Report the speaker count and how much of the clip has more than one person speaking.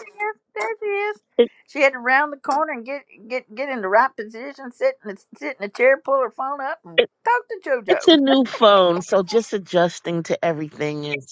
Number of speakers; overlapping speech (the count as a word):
two, about 4%